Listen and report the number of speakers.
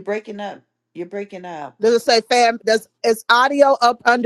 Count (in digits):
2